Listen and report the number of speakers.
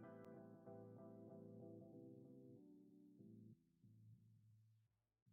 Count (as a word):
zero